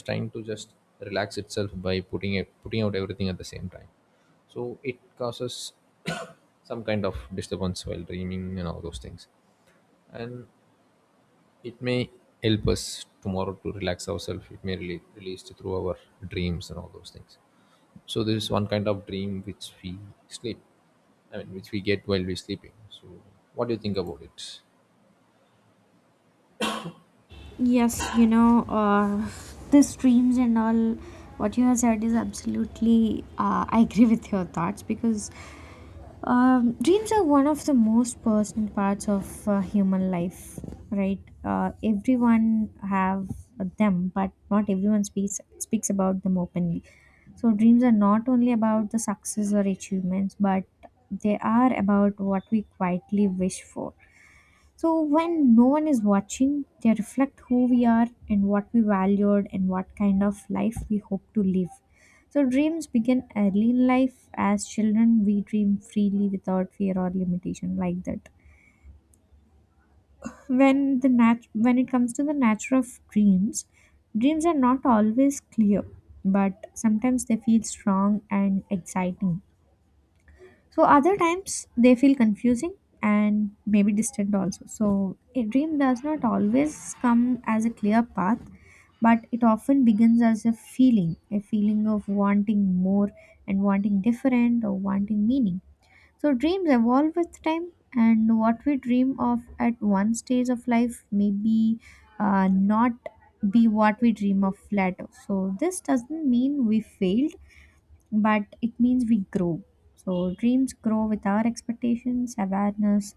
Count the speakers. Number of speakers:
2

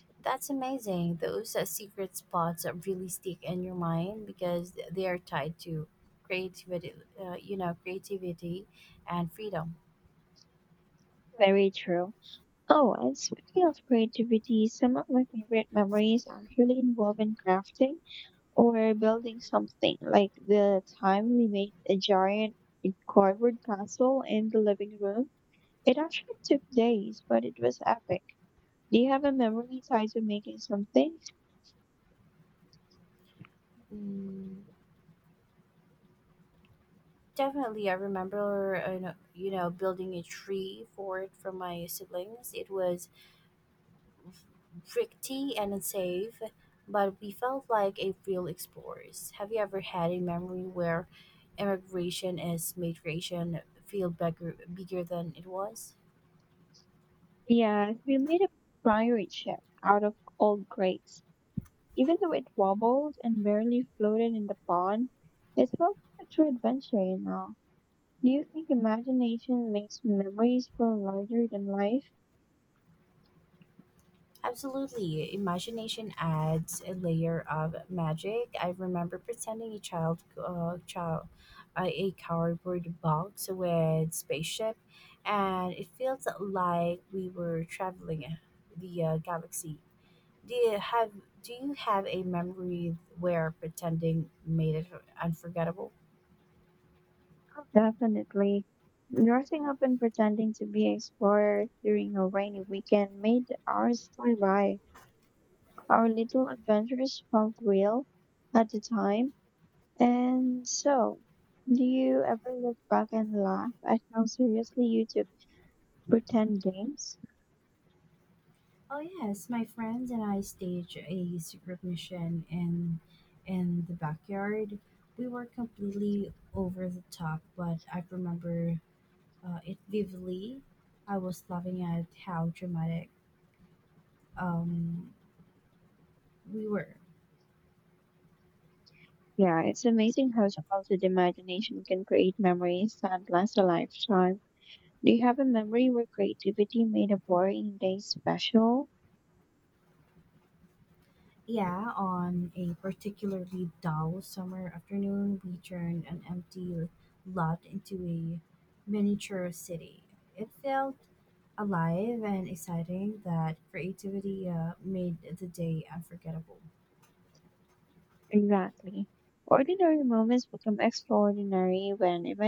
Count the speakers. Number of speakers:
2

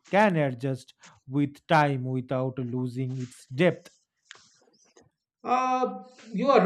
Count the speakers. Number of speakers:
2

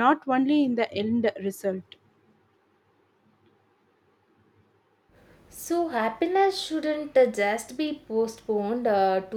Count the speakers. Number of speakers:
2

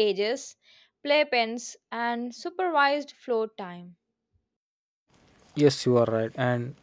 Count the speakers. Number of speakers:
2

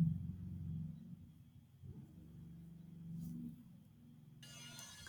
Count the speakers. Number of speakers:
0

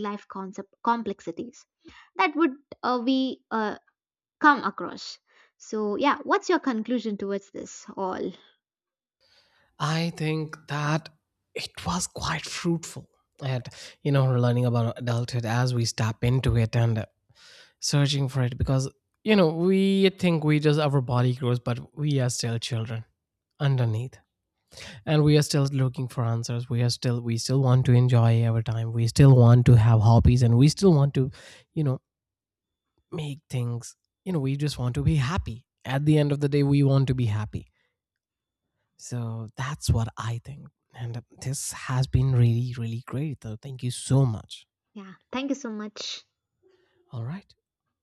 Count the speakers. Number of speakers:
2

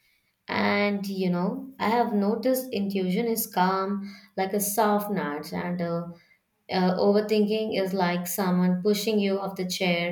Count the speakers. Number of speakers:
1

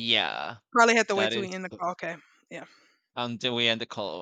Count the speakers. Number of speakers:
2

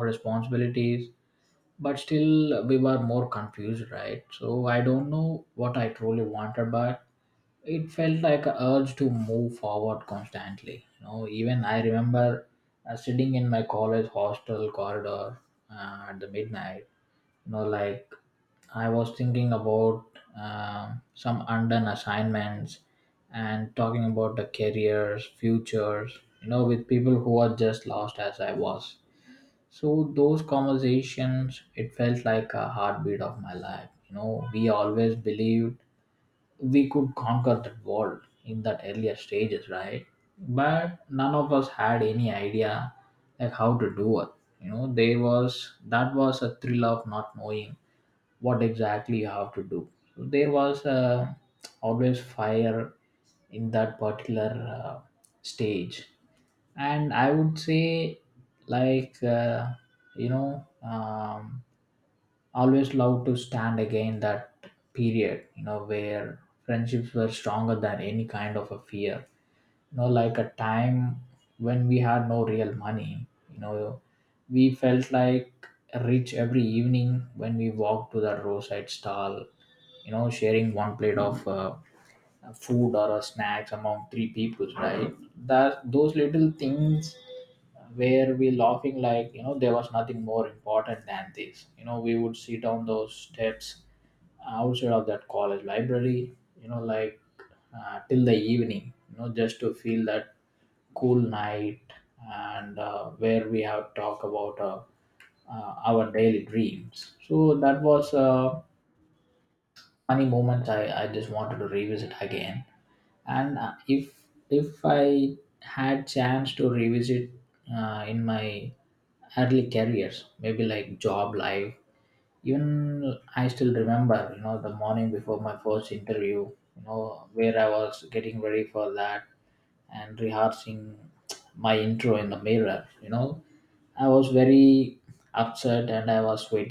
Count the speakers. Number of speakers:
1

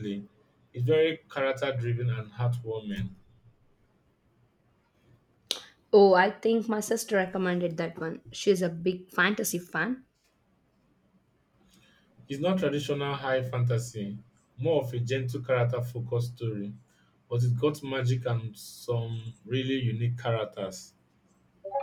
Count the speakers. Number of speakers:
2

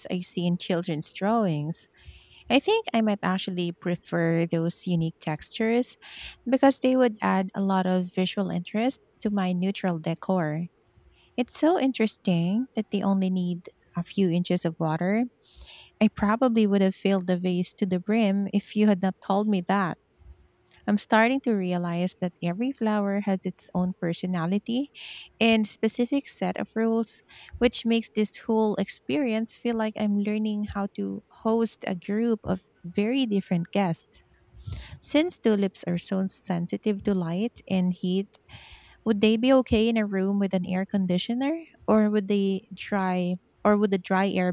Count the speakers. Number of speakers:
1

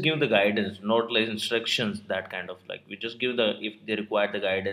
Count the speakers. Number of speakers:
1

